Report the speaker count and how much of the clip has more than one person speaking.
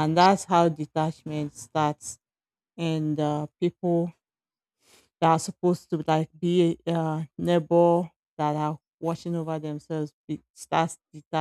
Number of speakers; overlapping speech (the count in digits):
1, no overlap